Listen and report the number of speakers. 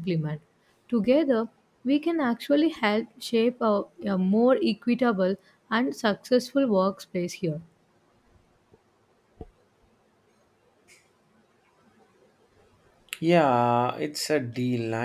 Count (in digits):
2